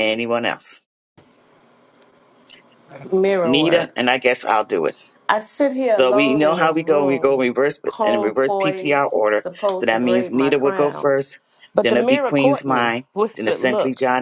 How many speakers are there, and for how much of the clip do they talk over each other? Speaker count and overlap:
two, about 45%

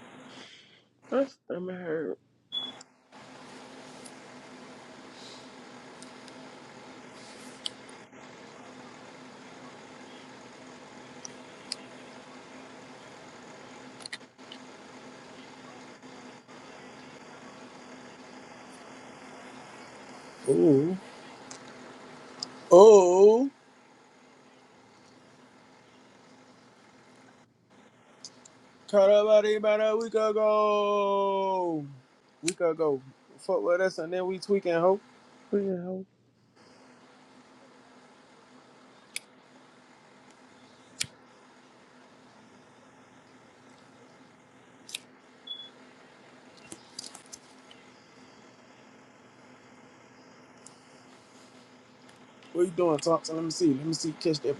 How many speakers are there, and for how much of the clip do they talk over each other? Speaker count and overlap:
two, no overlap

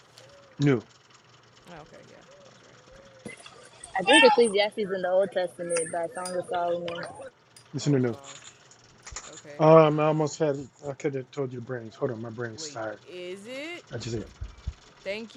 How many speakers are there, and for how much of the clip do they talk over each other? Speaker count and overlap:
three, about 9%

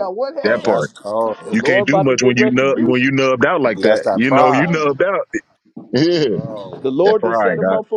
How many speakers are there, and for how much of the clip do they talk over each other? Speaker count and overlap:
three, about 50%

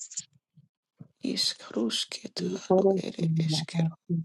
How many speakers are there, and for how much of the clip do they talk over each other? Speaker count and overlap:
two, about 24%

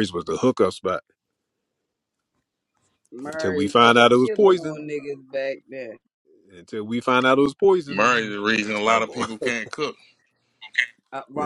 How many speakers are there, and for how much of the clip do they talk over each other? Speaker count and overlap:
three, about 27%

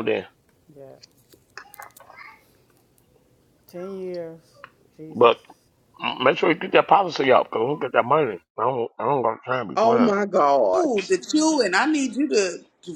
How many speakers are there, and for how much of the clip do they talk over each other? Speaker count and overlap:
four, about 6%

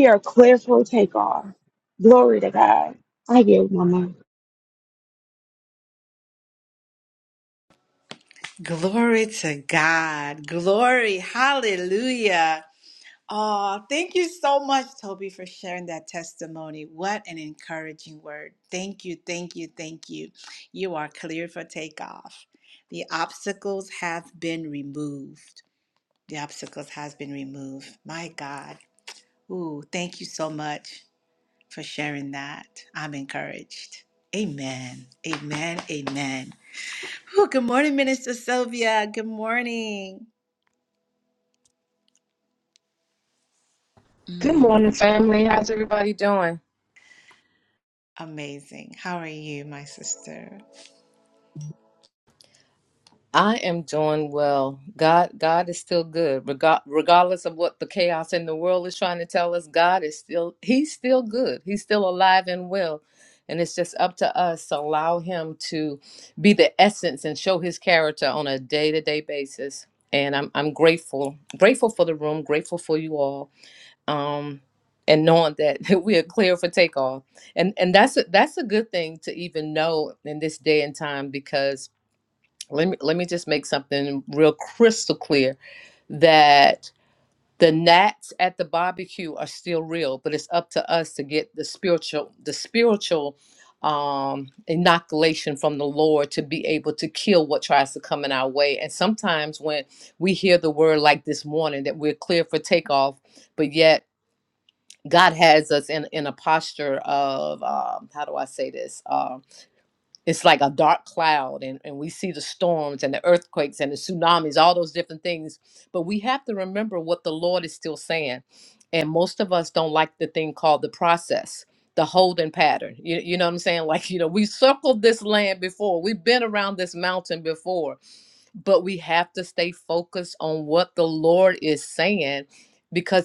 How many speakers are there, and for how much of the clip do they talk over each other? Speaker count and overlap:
three, under 1%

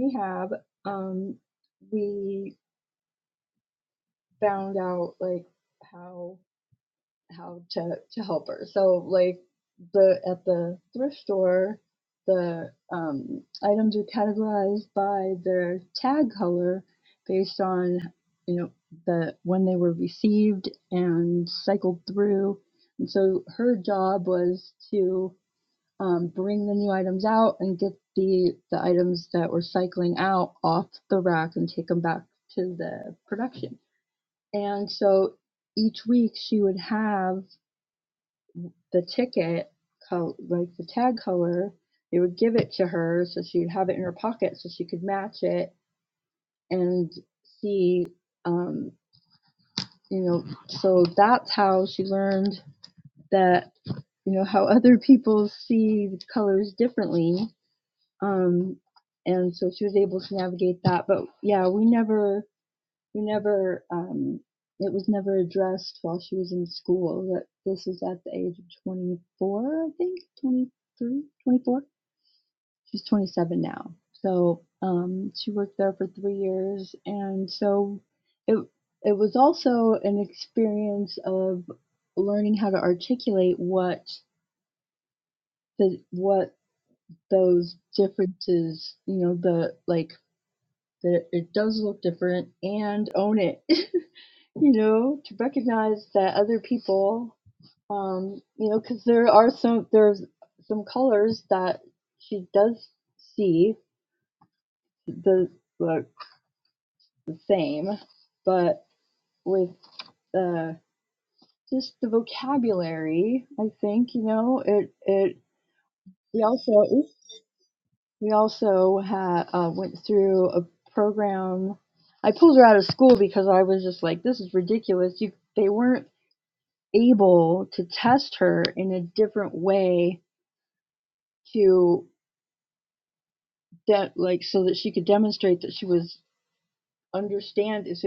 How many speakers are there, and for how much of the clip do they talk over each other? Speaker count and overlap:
one, no overlap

